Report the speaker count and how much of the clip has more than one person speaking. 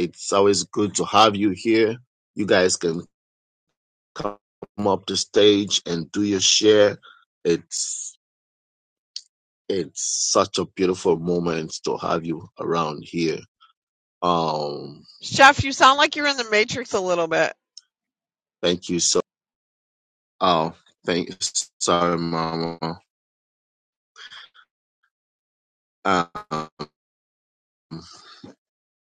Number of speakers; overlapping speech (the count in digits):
2, no overlap